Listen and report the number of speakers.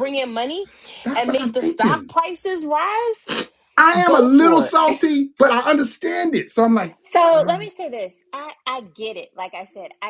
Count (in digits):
3